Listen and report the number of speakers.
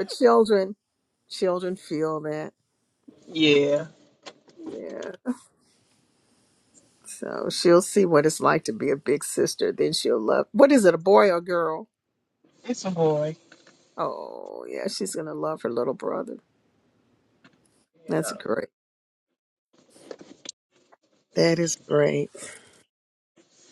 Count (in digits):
2